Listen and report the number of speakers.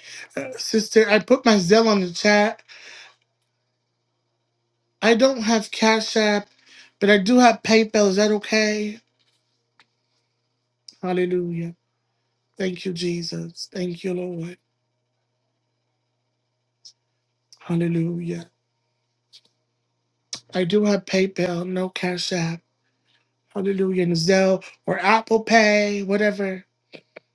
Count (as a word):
one